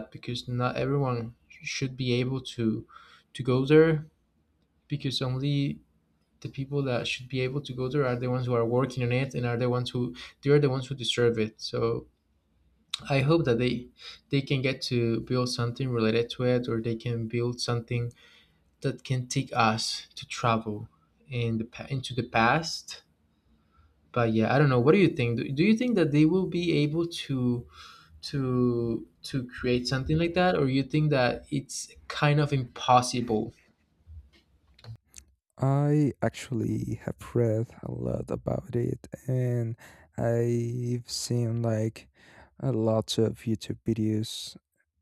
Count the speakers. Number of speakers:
two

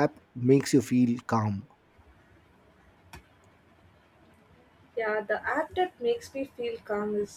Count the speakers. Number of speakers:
two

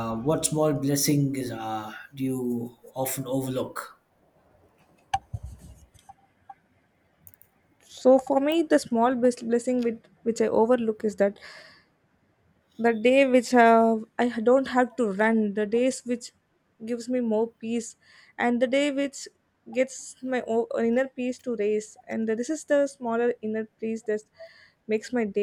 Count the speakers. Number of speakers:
two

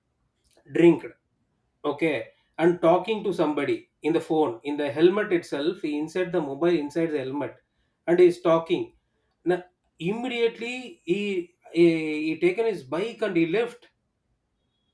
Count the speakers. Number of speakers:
one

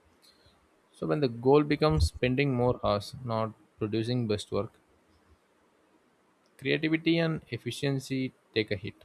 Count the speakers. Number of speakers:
one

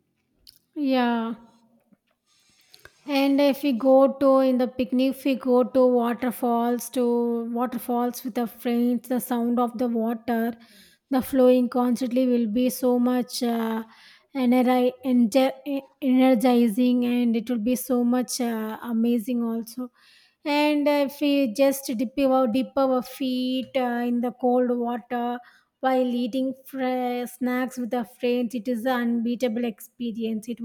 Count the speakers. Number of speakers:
one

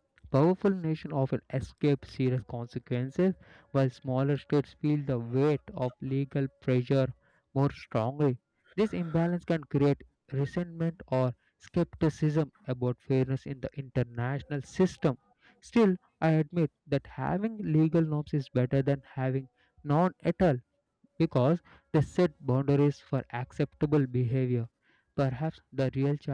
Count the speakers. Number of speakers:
one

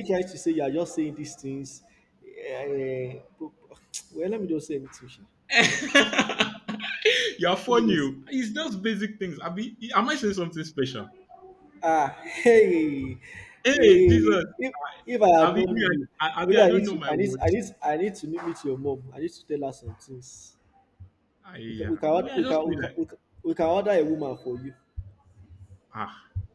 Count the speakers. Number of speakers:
two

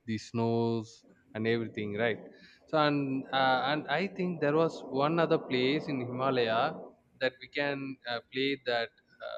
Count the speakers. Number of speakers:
one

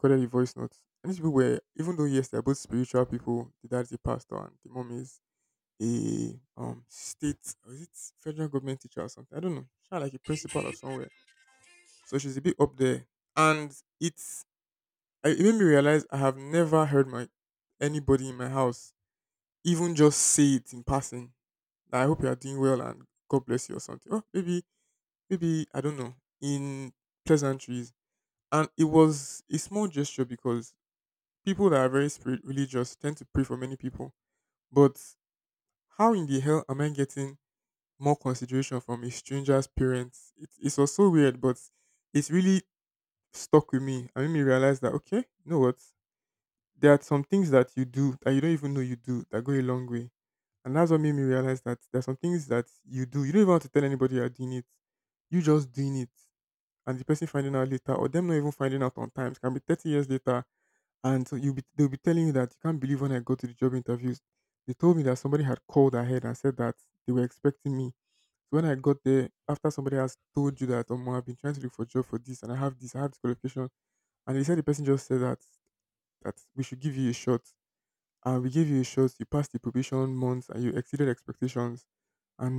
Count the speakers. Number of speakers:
one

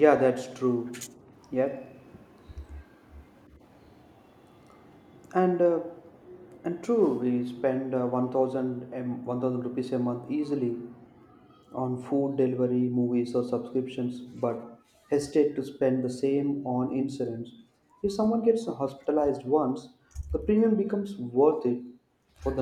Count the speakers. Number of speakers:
one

